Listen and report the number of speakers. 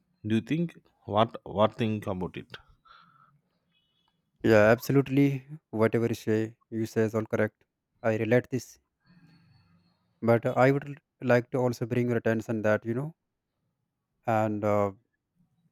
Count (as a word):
two